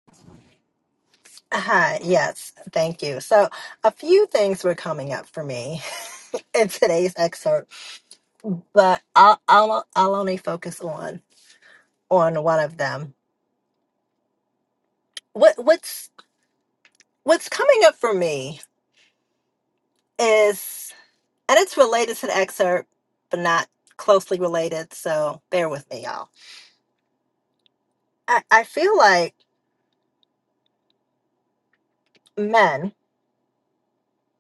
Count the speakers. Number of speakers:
1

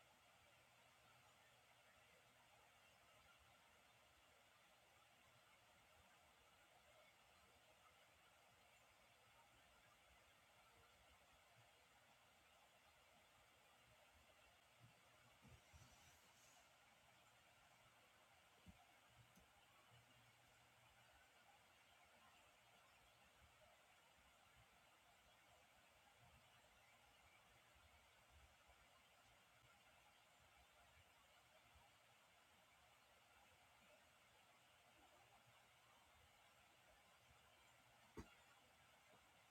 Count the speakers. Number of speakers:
0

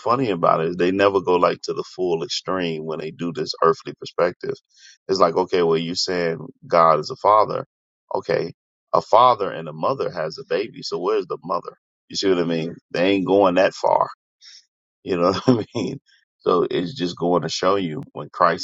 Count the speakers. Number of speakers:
1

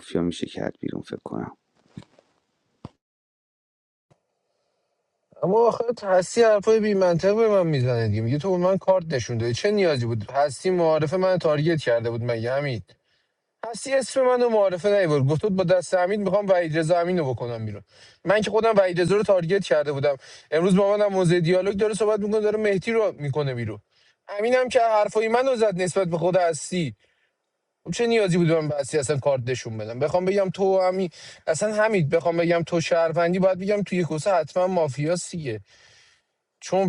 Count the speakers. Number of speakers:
2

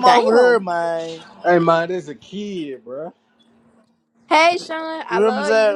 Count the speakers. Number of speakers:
3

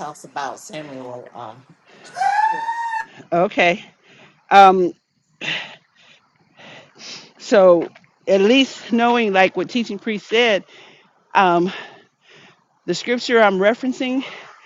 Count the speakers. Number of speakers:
2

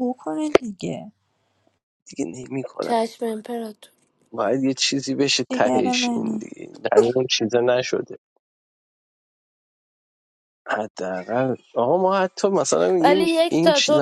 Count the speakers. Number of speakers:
3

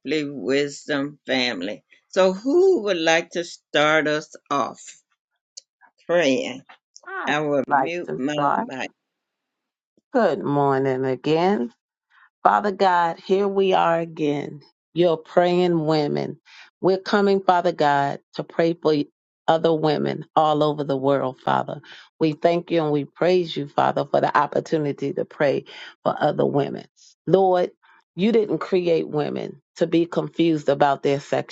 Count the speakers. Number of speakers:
2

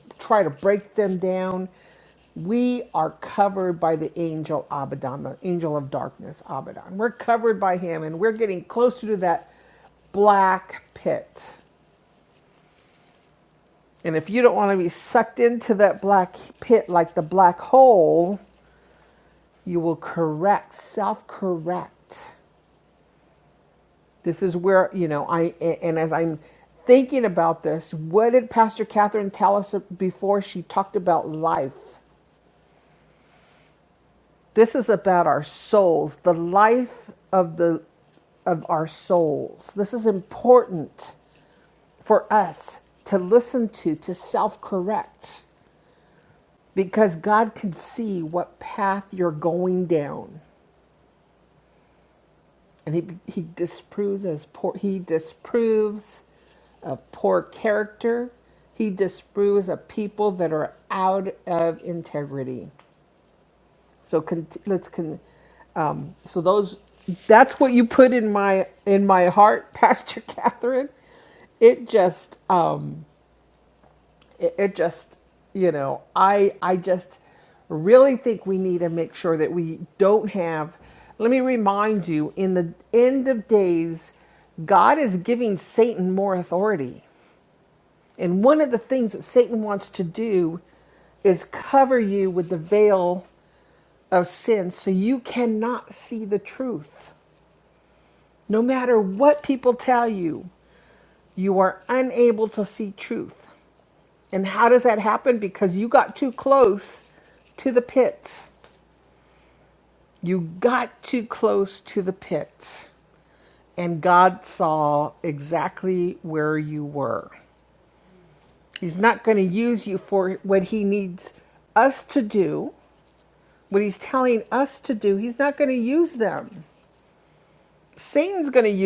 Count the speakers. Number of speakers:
1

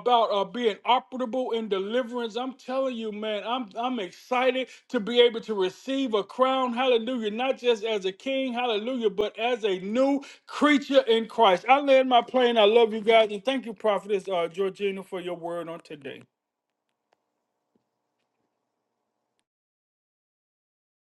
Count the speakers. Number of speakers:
1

